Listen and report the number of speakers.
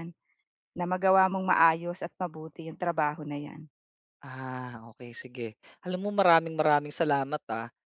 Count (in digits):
2